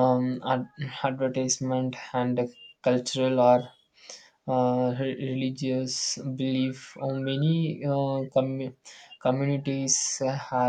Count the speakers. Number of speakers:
1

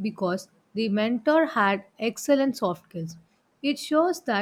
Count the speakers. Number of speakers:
1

